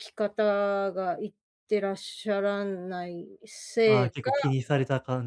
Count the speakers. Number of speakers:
2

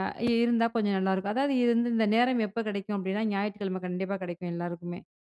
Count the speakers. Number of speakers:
1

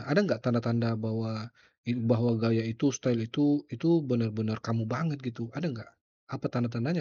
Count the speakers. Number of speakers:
1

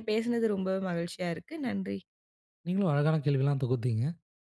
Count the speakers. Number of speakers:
2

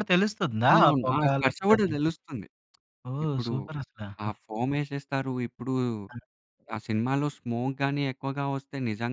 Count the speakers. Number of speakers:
2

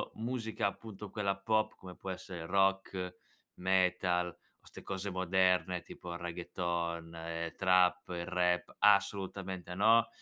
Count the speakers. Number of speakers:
1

